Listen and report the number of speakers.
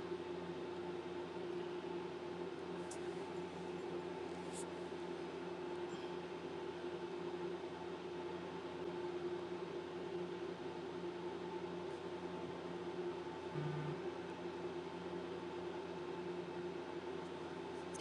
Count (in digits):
0